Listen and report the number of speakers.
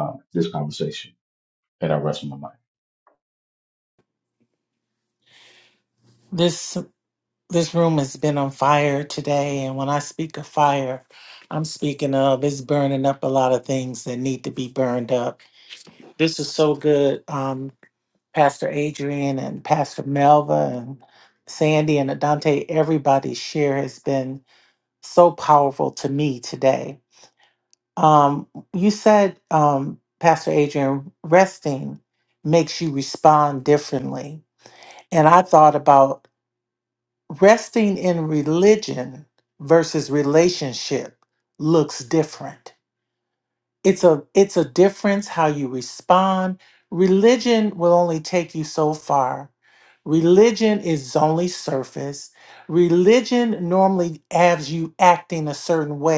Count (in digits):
2